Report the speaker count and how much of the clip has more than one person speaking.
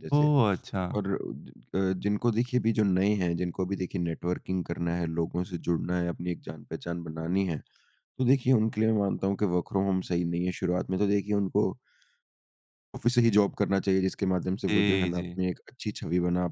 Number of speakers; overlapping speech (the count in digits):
2, about 6%